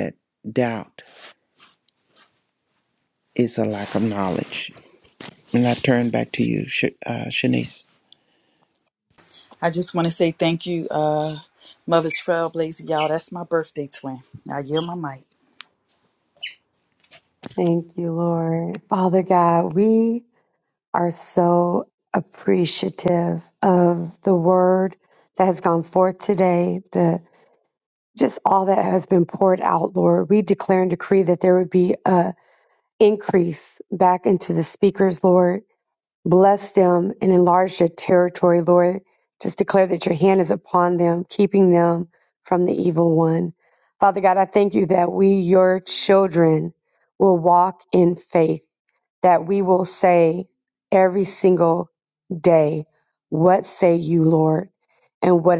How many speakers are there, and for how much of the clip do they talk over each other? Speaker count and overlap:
3, no overlap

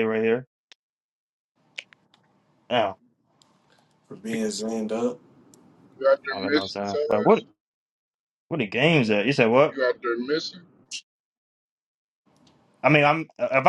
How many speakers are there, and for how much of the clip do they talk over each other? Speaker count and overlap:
3, about 8%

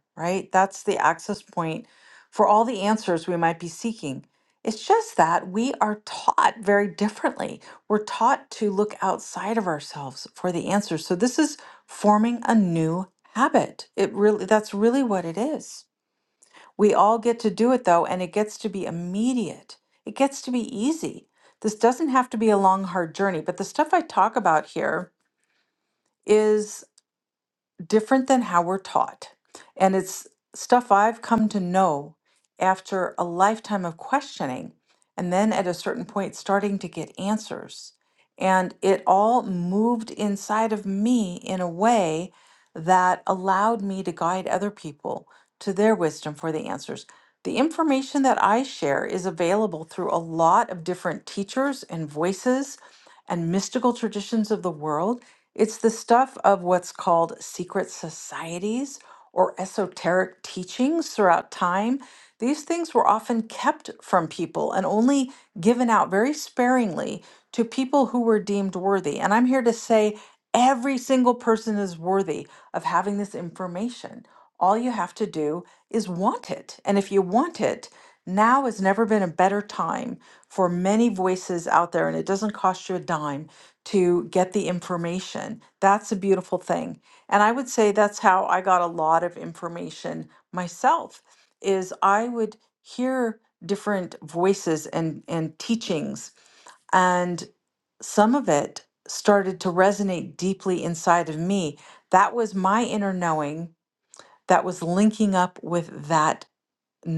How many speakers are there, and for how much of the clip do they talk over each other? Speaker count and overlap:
1, no overlap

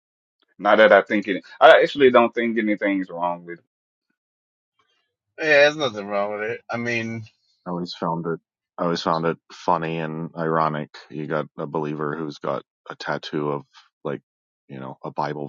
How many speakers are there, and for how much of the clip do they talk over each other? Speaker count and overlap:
3, no overlap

